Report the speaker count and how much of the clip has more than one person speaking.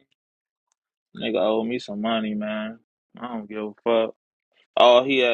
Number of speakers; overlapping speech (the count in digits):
1, no overlap